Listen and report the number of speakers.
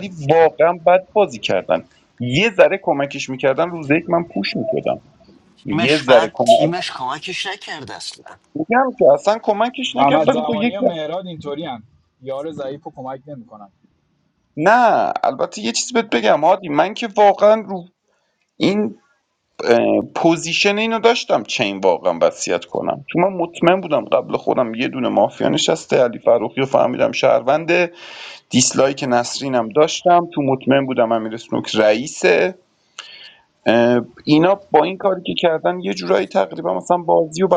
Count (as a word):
three